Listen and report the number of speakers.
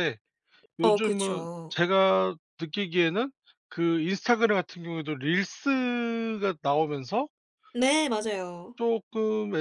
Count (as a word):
two